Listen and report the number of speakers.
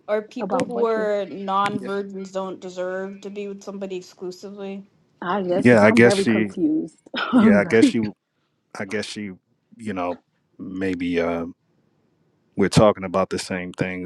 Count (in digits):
3